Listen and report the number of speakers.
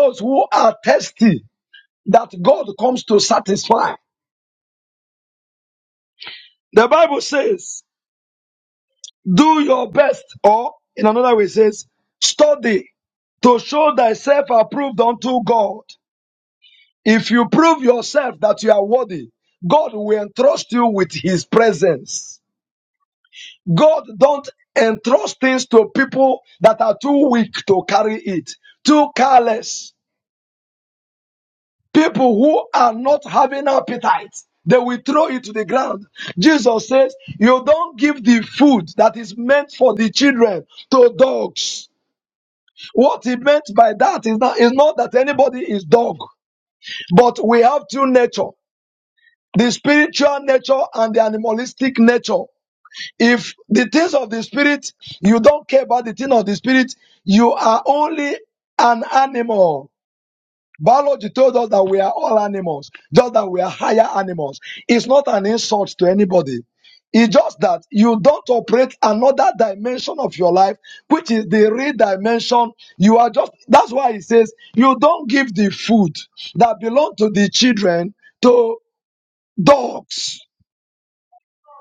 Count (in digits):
1